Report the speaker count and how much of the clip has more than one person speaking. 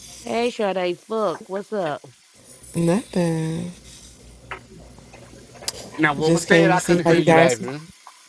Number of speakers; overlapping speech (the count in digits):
3, about 16%